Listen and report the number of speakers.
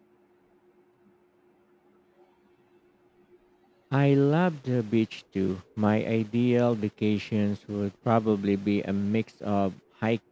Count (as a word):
one